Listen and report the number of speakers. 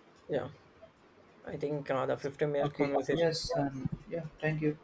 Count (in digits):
2